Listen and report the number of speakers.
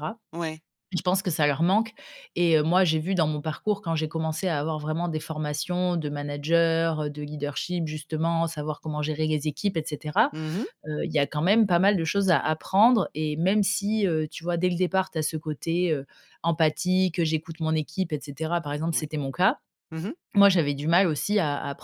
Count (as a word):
two